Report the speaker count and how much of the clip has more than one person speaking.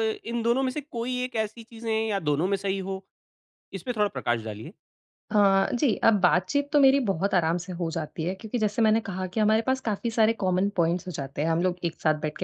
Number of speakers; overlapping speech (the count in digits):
2, no overlap